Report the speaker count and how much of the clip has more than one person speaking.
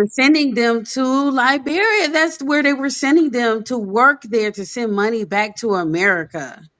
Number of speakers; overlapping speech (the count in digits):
1, no overlap